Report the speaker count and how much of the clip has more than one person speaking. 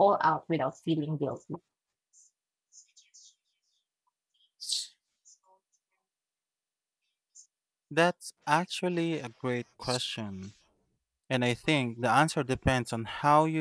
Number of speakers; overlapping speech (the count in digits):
2, no overlap